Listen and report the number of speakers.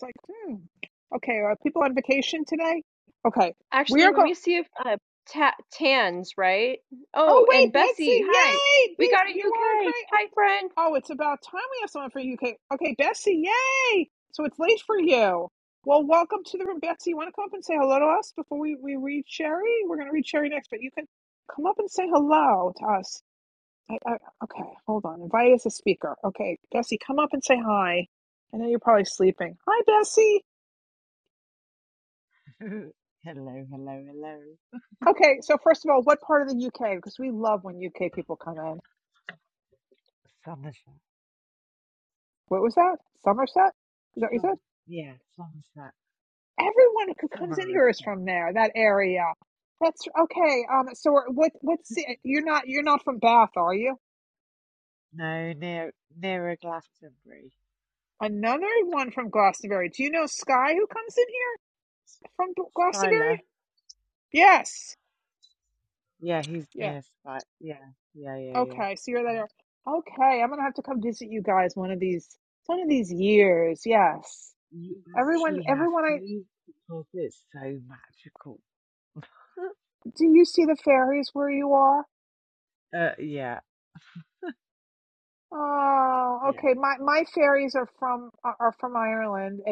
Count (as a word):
three